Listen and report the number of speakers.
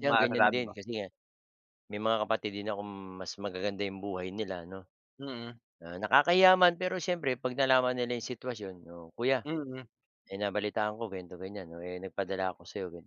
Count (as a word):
two